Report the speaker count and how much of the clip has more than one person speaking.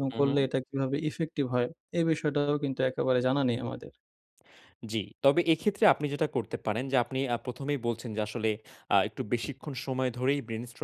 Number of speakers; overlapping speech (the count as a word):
two, about 3%